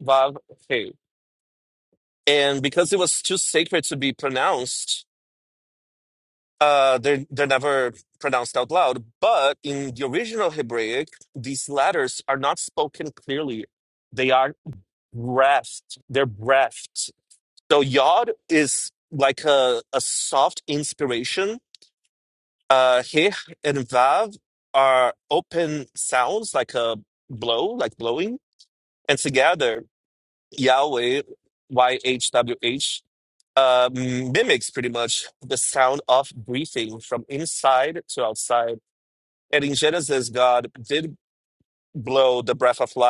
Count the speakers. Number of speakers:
1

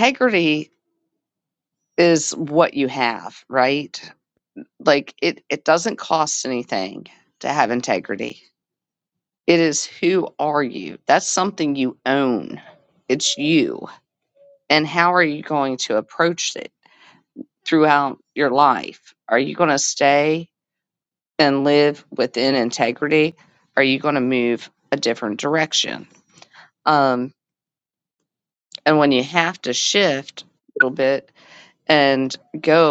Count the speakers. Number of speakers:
1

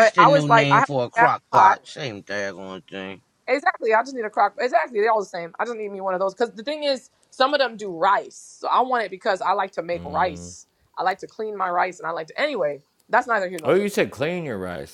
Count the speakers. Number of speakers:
3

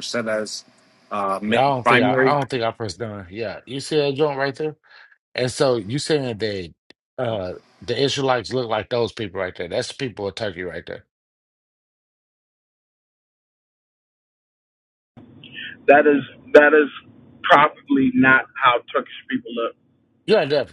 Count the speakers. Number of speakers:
3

